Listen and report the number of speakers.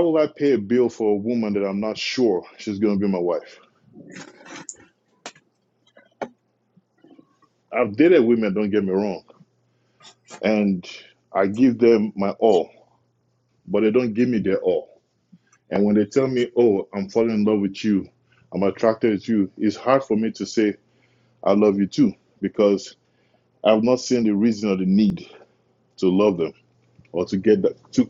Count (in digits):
1